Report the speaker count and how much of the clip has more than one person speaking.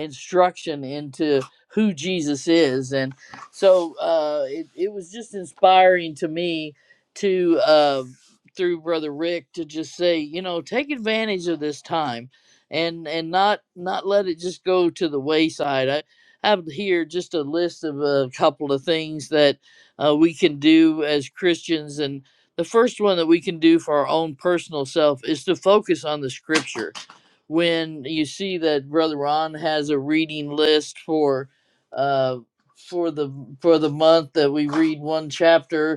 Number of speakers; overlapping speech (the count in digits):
1, no overlap